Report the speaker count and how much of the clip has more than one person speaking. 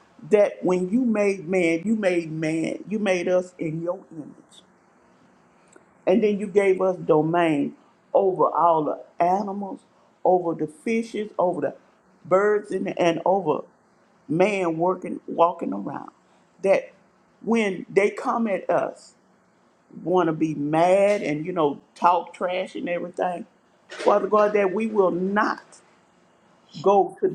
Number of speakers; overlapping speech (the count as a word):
one, no overlap